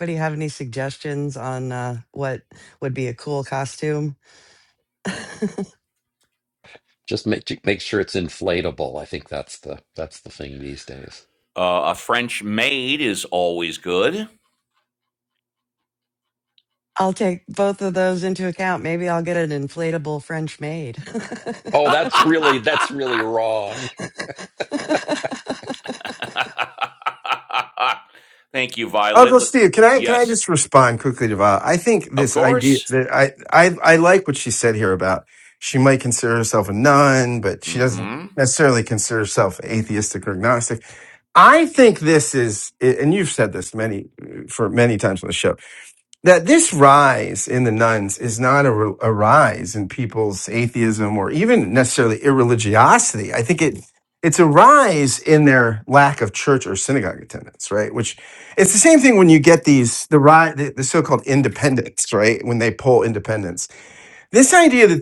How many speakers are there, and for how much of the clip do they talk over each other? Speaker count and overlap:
four, about 3%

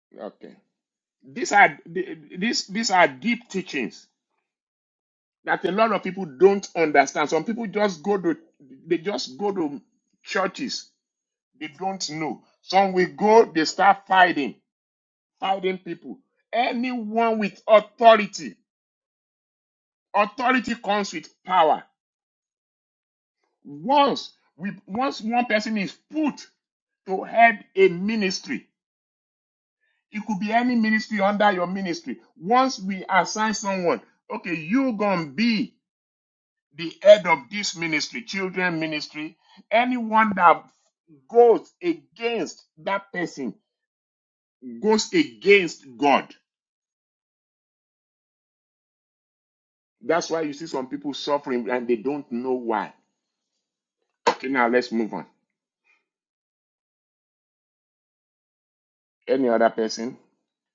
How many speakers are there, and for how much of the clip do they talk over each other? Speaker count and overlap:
one, no overlap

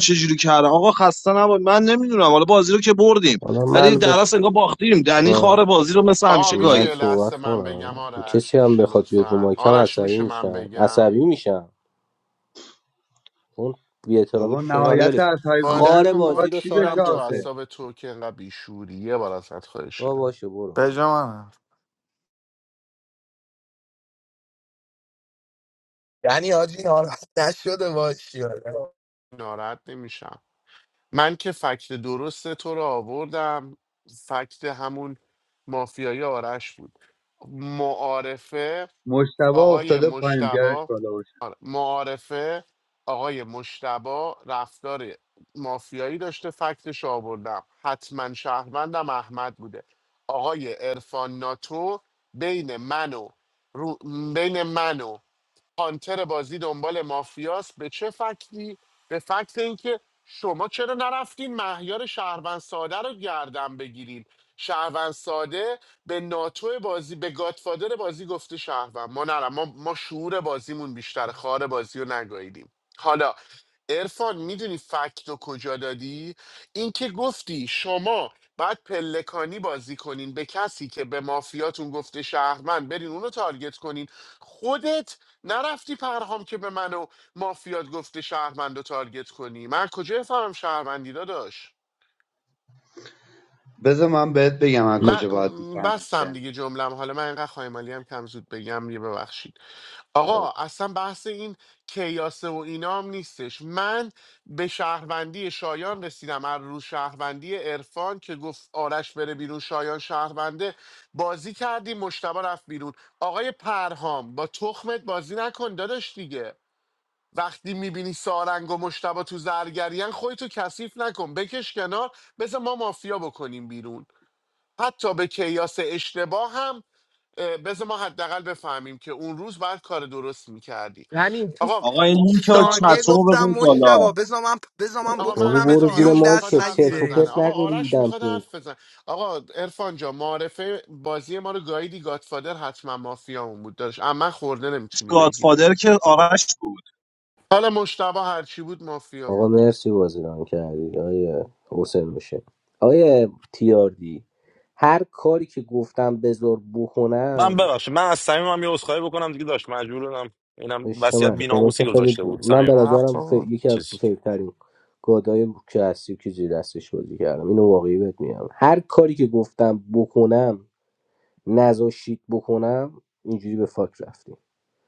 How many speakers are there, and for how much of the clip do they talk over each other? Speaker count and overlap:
seven, about 11%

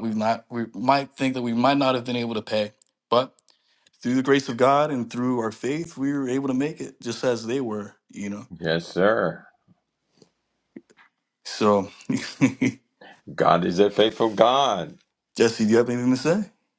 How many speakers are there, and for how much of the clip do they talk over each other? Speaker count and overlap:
two, no overlap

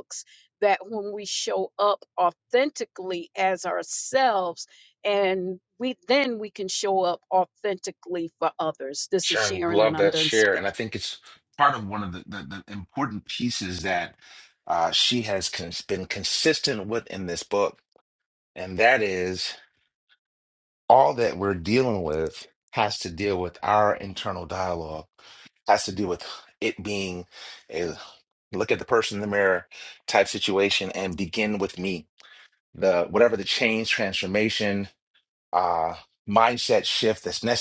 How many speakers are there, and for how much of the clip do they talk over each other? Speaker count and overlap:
two, about 4%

